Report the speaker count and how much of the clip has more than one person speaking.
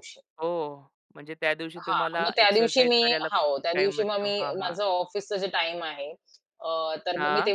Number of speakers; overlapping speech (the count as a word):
two, about 45%